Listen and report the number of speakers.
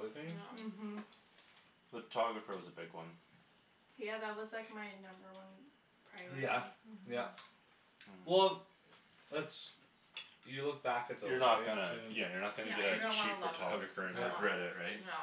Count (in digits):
4